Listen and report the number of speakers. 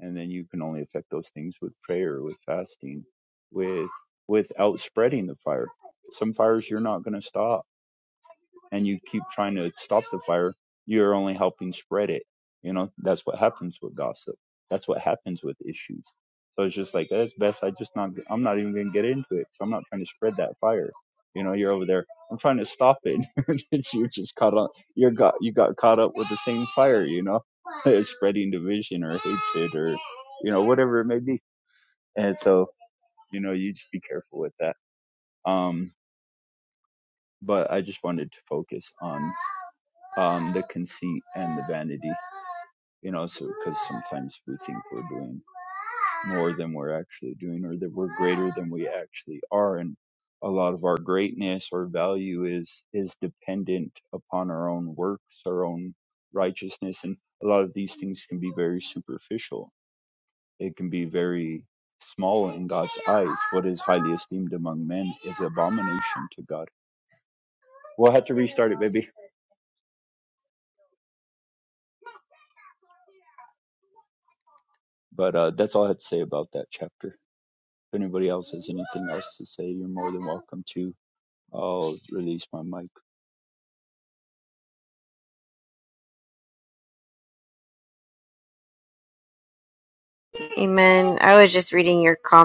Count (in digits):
2